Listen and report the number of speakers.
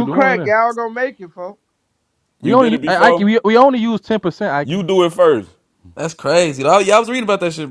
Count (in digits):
4